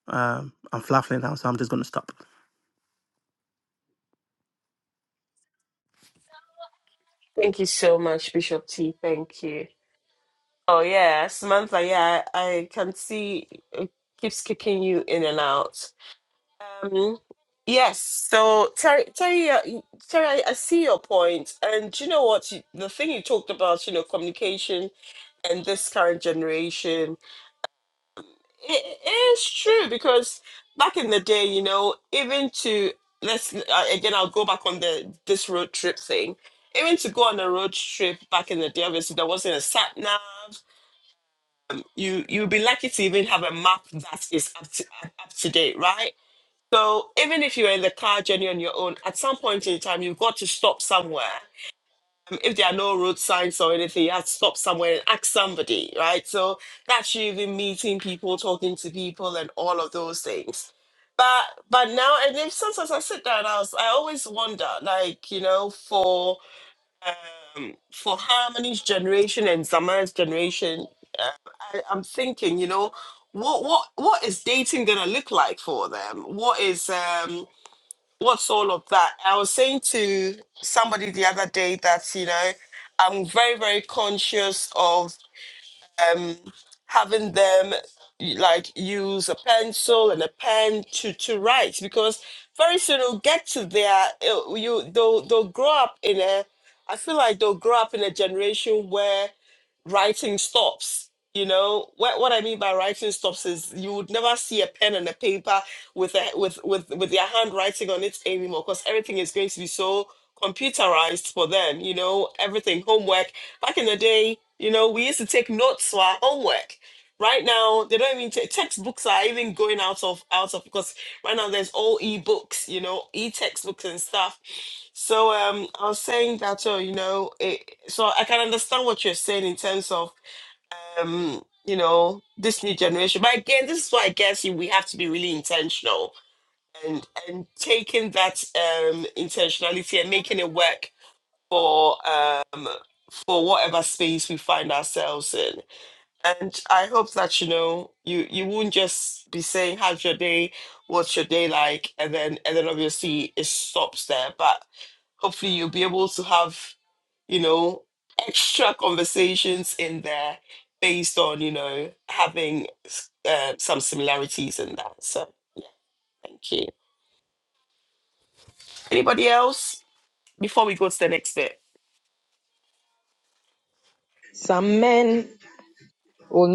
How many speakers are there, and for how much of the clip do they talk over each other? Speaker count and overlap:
3, no overlap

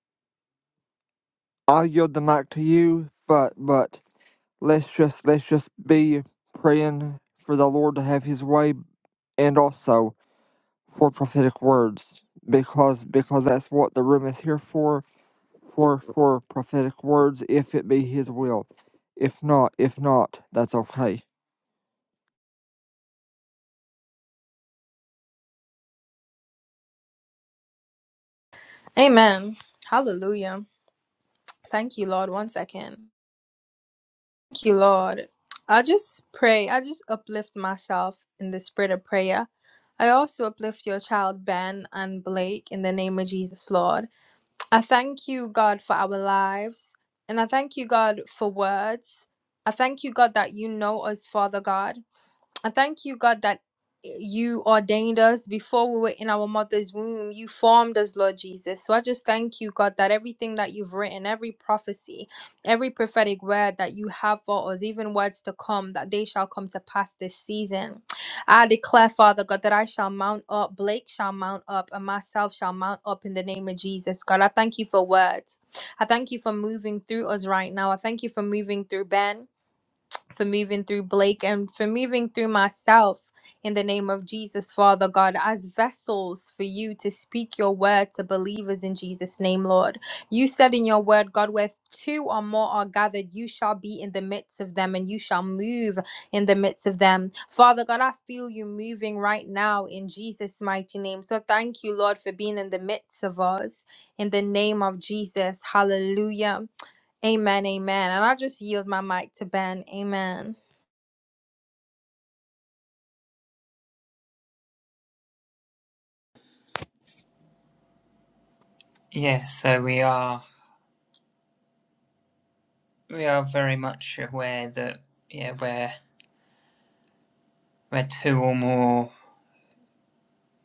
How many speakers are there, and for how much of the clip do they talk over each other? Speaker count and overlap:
3, no overlap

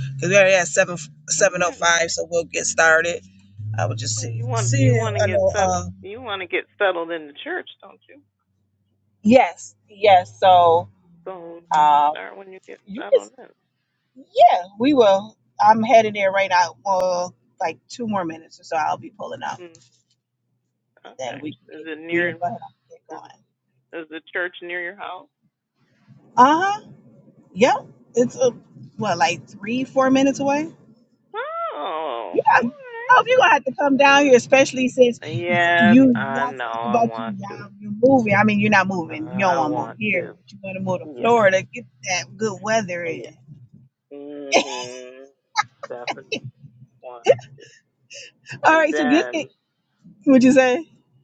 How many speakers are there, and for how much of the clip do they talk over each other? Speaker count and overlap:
2, about 16%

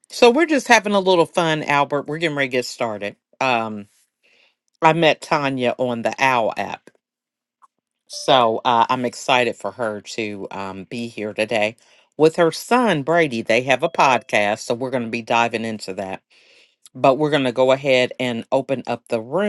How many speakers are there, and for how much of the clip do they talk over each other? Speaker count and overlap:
1, no overlap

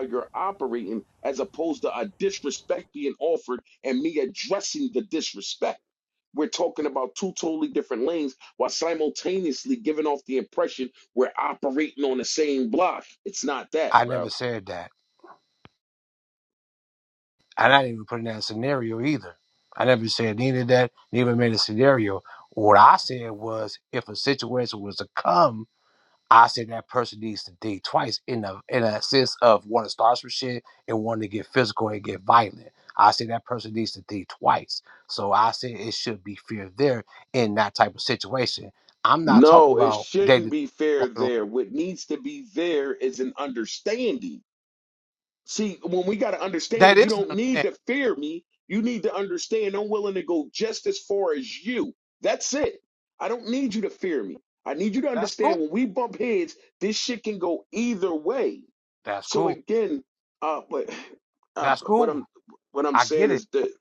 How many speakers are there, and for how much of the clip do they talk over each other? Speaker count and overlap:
2, about 7%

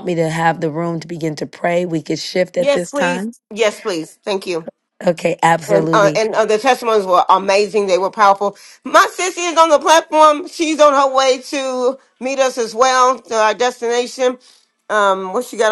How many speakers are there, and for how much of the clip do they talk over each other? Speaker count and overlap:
2, about 8%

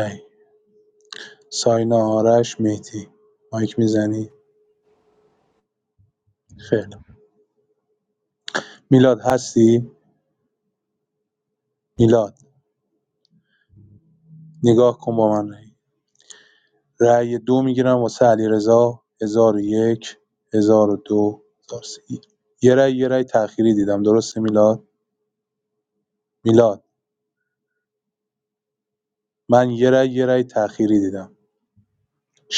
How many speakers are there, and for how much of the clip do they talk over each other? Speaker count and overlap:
1, no overlap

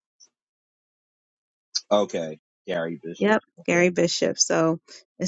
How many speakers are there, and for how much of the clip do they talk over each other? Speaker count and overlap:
2, about 13%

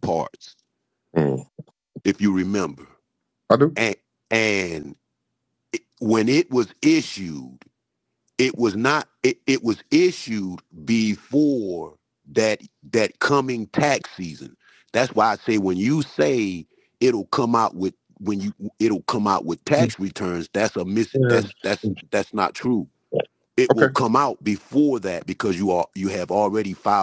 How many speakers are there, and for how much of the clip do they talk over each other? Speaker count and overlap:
2, about 2%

